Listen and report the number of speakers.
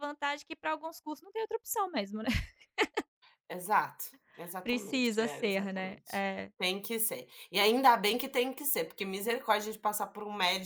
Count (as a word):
two